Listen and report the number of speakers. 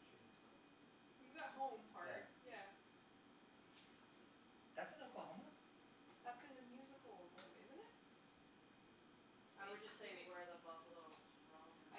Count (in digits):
3